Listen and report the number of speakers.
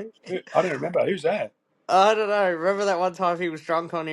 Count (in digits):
2